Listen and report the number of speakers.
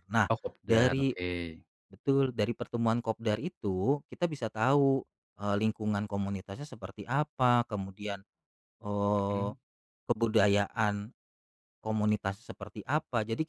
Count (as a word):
two